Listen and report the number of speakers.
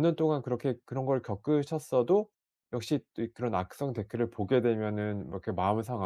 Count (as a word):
one